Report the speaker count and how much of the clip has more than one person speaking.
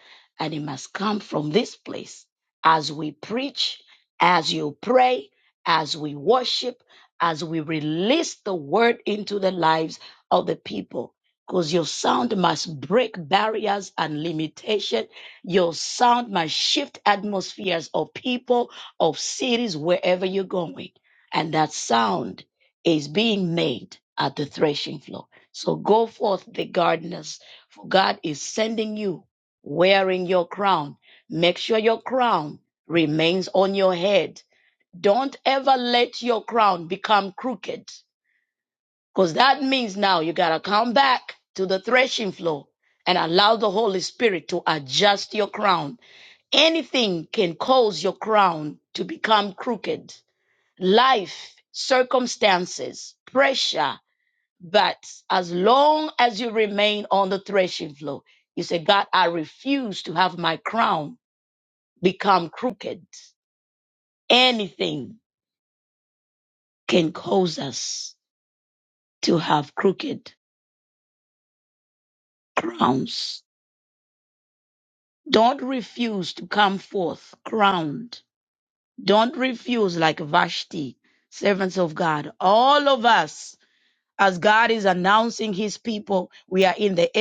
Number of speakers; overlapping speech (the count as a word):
one, no overlap